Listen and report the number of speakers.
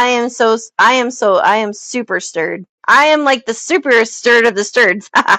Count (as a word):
one